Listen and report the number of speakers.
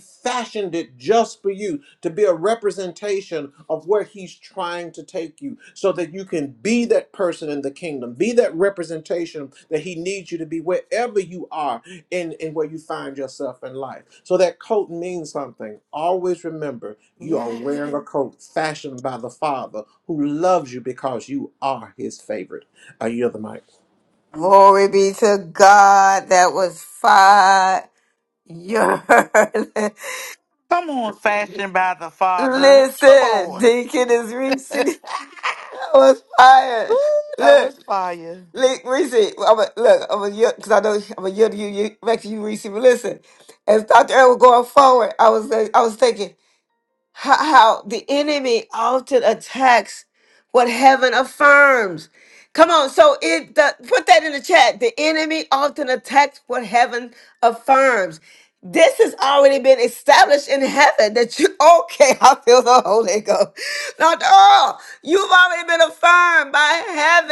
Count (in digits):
3